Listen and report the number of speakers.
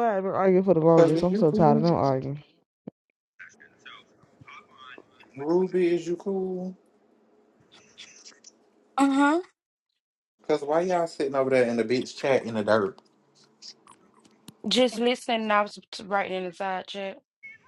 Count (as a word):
three